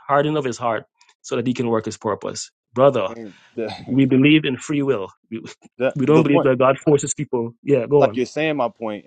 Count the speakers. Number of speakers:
2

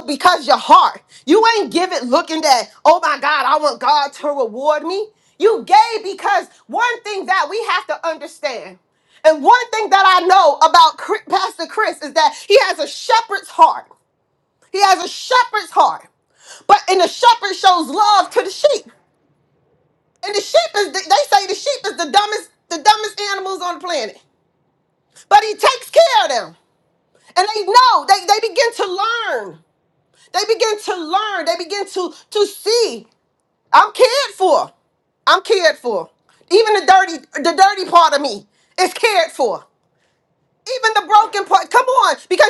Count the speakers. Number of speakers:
1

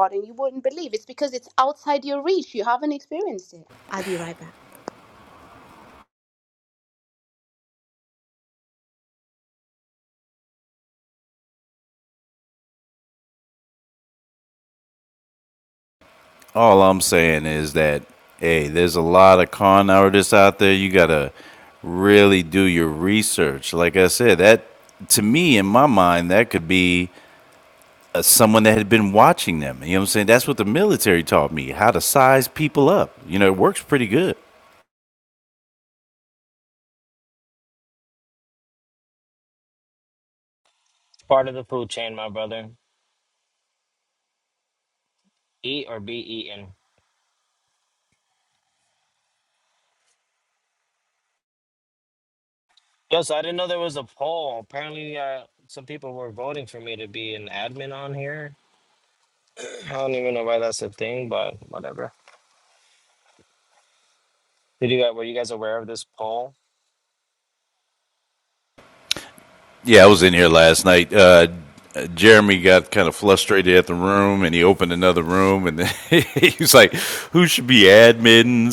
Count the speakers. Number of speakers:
3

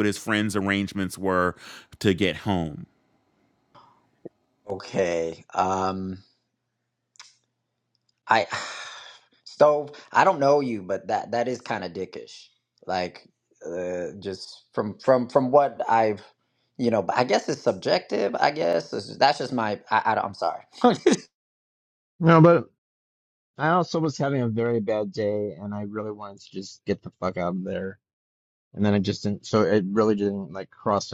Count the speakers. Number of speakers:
3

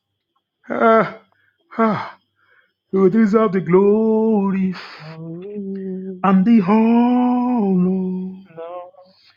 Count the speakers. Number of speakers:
2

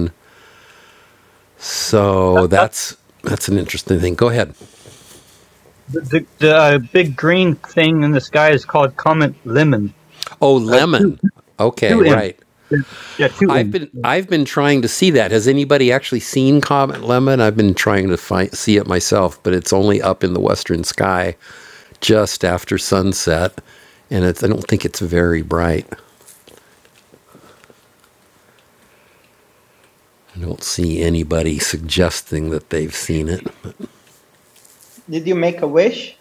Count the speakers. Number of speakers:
3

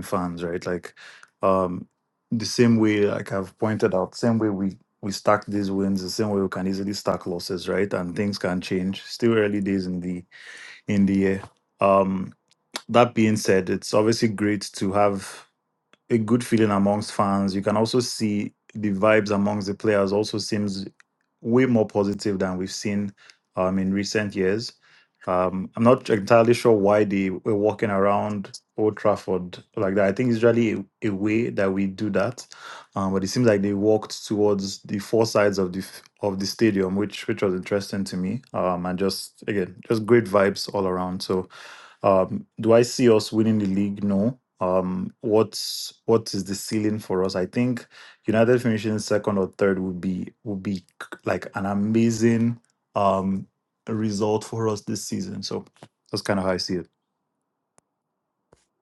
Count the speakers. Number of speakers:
1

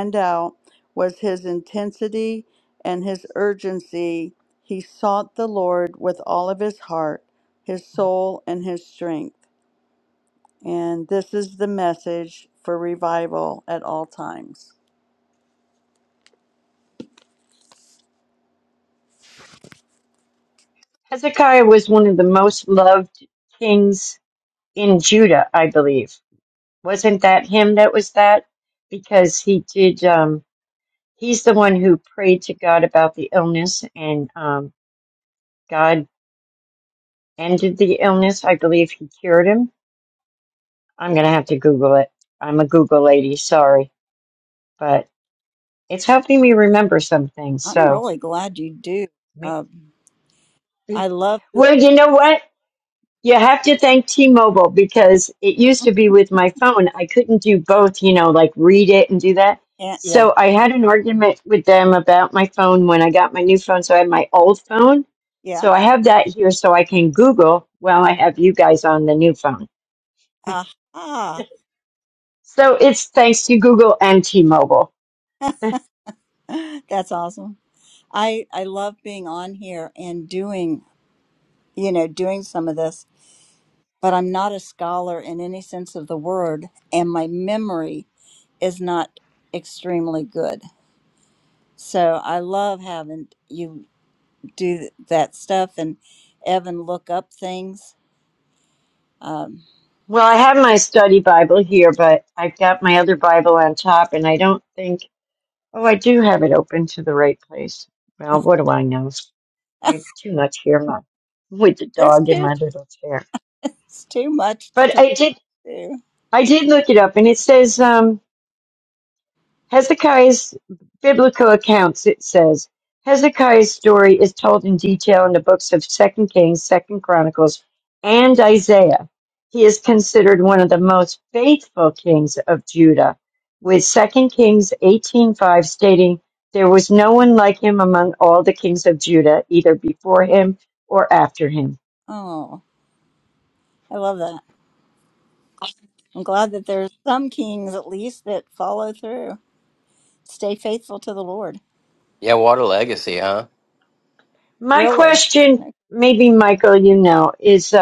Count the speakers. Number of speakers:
4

